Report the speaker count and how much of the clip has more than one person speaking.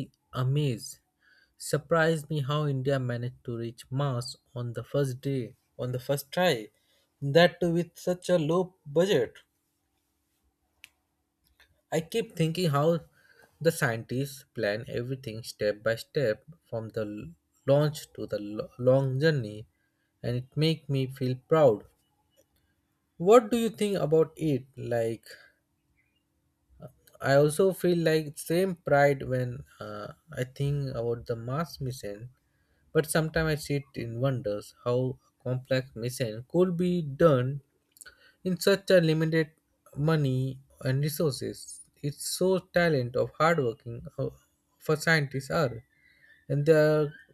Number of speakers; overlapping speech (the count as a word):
one, no overlap